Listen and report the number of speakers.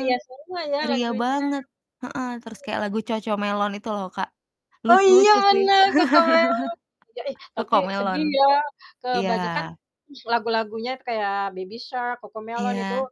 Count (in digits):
2